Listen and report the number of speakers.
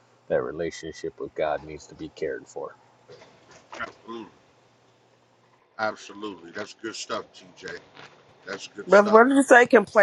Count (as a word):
three